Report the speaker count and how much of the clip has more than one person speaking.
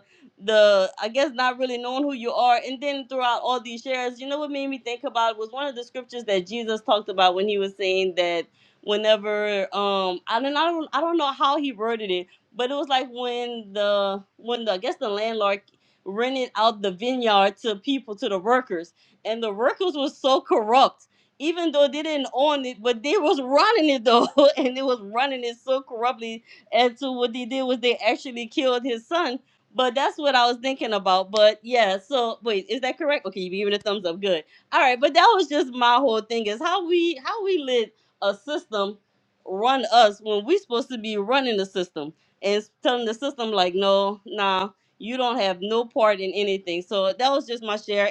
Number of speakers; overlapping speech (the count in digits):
1, no overlap